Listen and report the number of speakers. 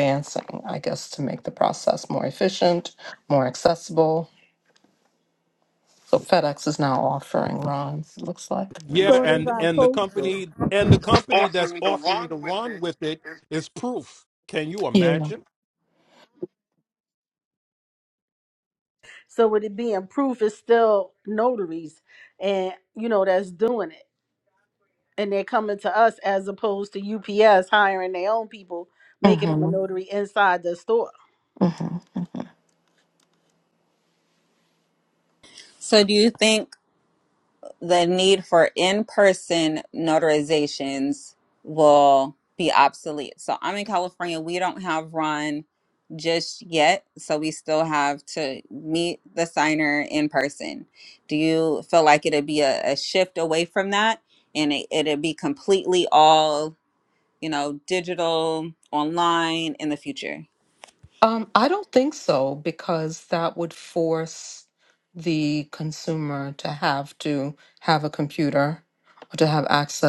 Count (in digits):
4